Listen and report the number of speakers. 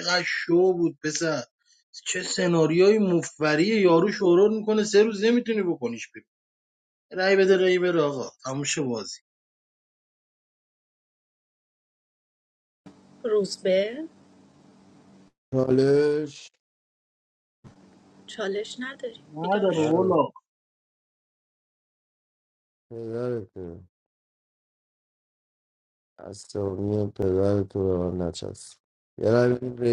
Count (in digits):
3